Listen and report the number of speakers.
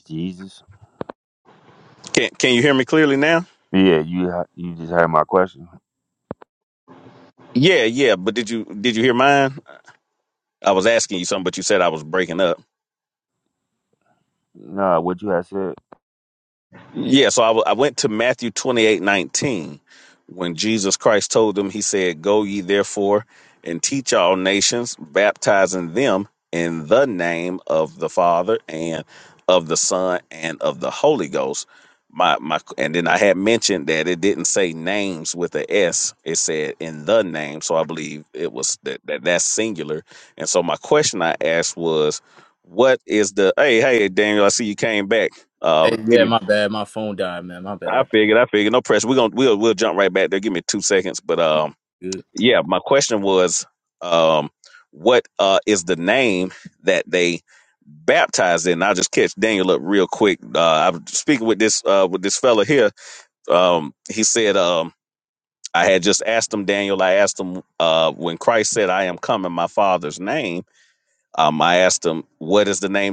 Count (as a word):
three